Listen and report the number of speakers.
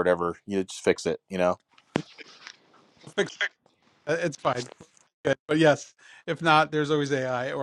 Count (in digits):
2